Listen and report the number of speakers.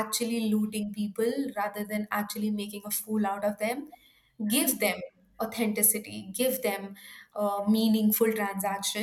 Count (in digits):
1